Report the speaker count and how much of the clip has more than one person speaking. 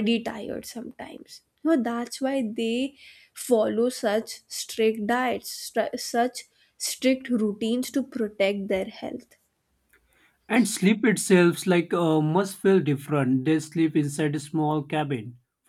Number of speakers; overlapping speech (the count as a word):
two, no overlap